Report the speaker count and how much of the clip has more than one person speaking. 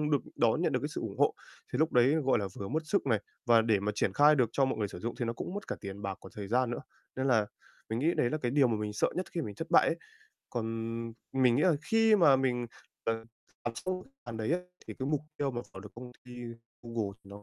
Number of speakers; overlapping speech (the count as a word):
one, no overlap